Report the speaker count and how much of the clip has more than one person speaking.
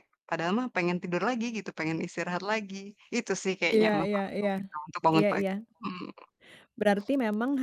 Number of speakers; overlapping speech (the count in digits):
2, about 15%